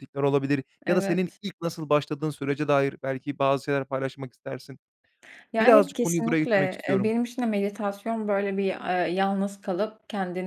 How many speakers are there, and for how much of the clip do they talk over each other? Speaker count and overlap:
two, about 18%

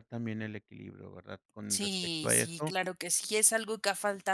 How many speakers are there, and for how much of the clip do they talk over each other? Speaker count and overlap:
two, about 23%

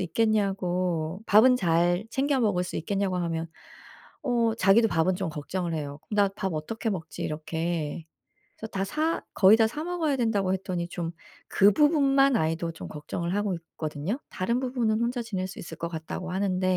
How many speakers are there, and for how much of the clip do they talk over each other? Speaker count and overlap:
one, no overlap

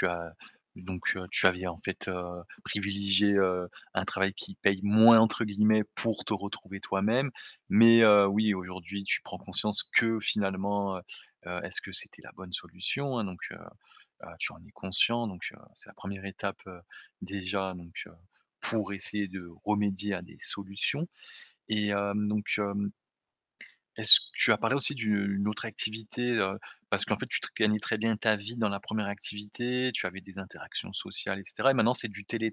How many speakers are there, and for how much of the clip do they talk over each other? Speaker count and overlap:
one, no overlap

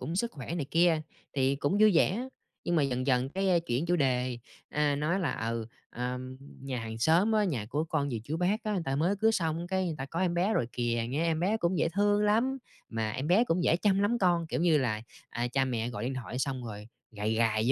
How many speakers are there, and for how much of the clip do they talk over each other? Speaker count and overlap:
one, no overlap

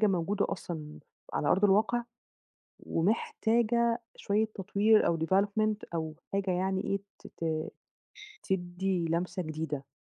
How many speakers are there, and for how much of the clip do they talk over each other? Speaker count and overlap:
one, no overlap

